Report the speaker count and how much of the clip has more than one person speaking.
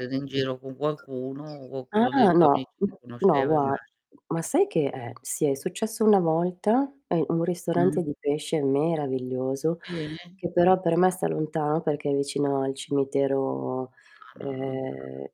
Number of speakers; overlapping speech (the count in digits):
2, about 13%